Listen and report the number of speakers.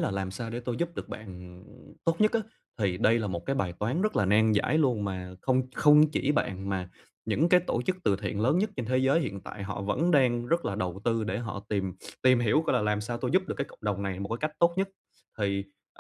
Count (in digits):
1